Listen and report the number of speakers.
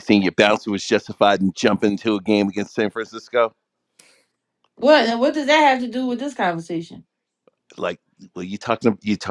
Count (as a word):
two